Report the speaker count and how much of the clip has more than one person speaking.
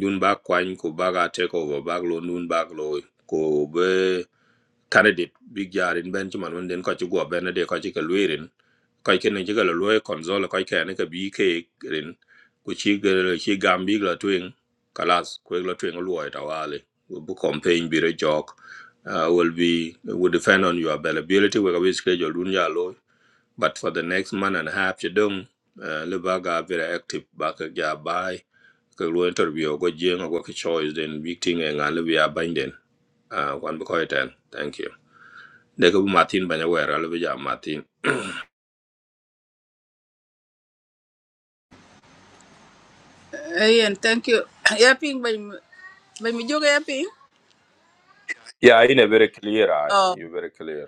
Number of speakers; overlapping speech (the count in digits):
2, about 1%